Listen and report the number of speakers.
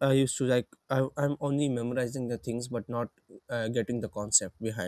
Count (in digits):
1